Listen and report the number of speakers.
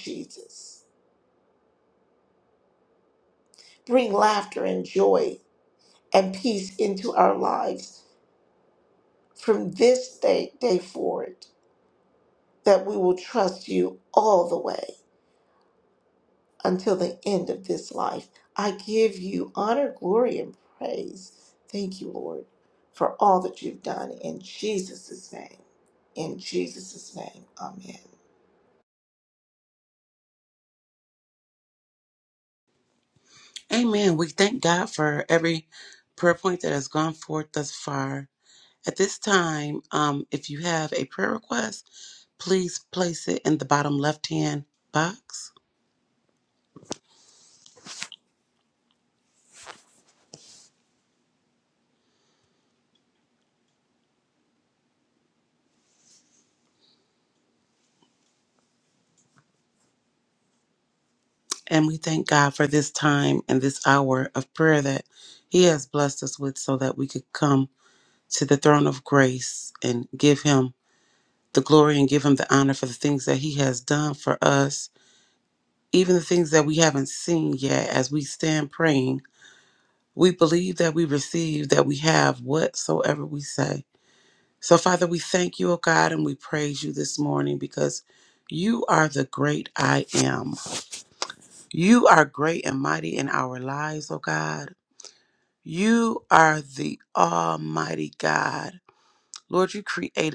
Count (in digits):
2